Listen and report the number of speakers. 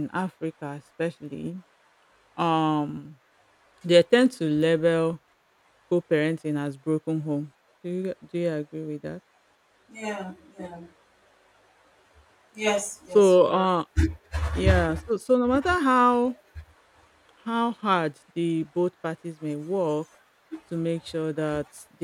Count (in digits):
2